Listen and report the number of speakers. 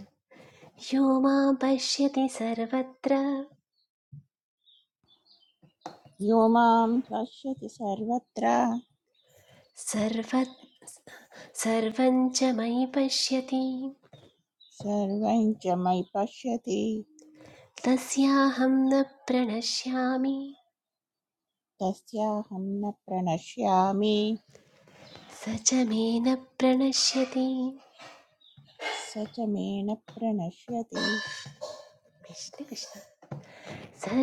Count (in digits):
2